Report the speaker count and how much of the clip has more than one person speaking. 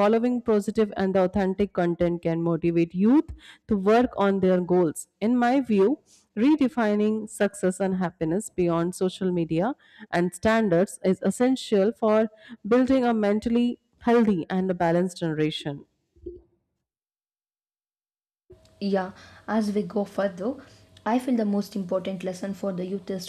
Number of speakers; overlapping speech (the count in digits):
2, no overlap